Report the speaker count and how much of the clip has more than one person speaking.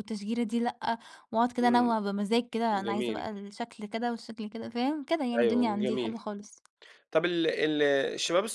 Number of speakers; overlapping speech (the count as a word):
two, about 19%